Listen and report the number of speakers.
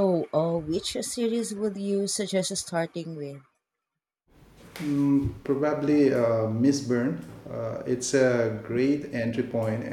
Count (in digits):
2